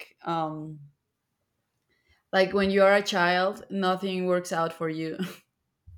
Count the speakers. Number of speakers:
1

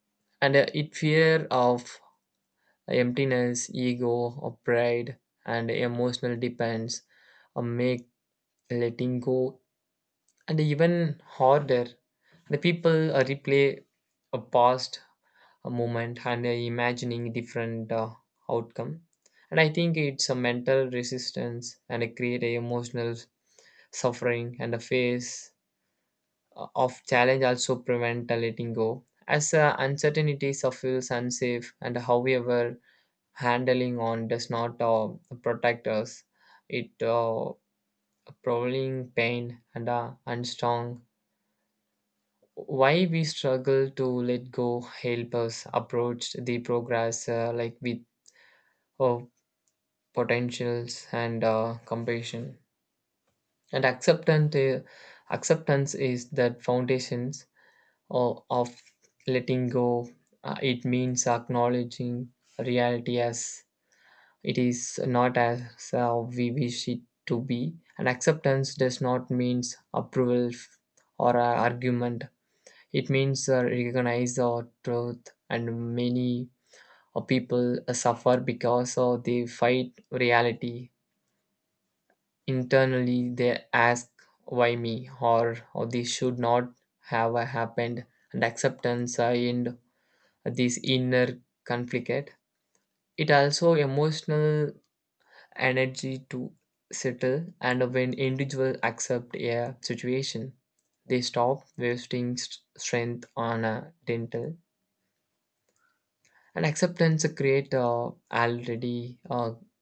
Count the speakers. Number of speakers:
1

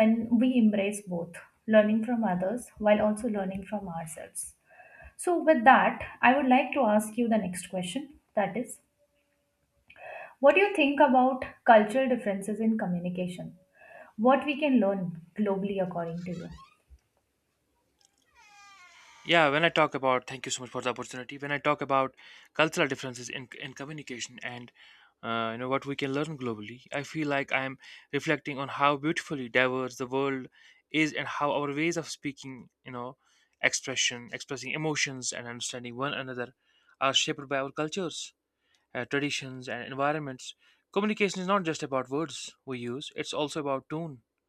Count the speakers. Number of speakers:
2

